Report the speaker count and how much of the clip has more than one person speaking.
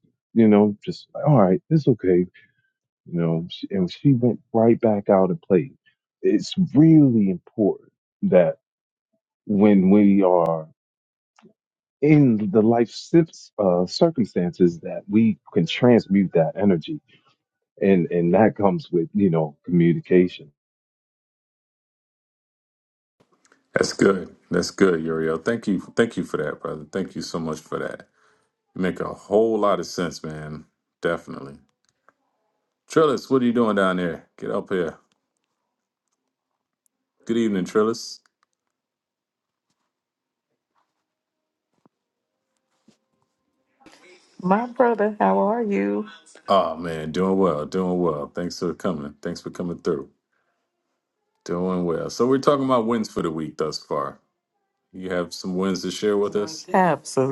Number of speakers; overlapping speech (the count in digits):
3, no overlap